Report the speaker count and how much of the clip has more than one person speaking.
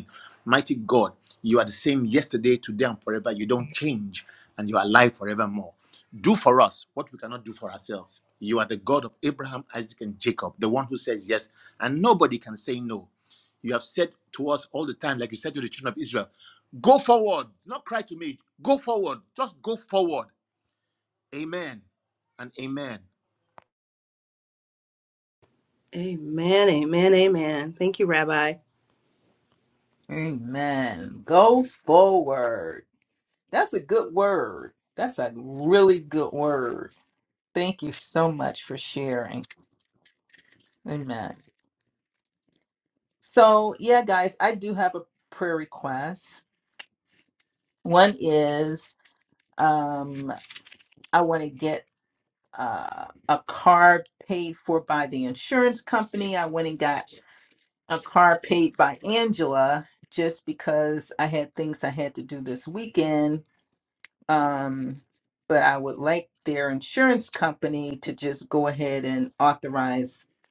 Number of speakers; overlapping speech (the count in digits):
3, no overlap